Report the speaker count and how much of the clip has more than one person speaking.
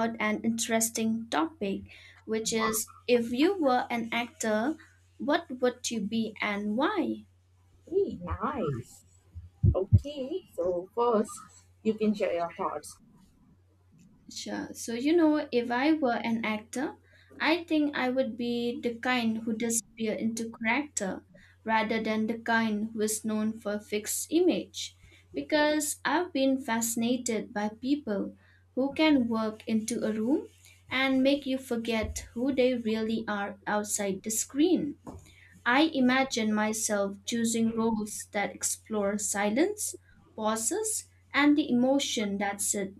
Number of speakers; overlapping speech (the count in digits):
2, no overlap